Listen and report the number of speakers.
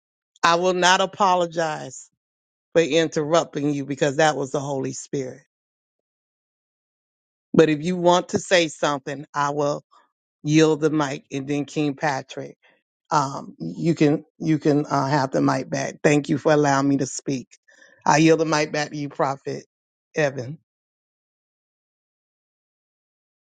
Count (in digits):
1